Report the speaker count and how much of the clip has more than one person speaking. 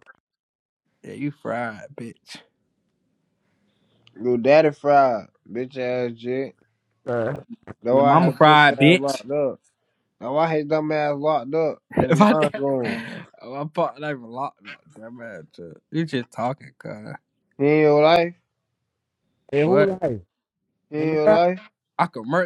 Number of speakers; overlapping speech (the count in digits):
3, about 14%